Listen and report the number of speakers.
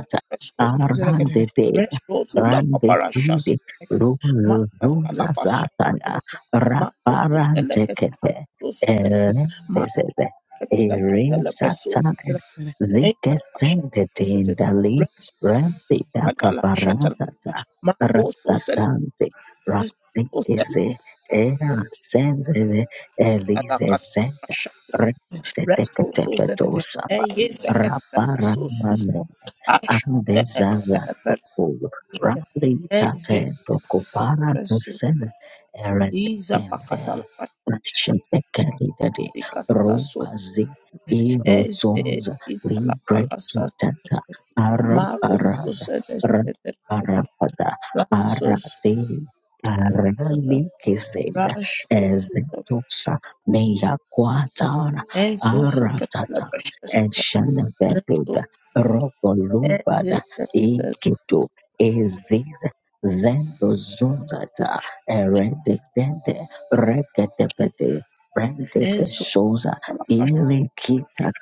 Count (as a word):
two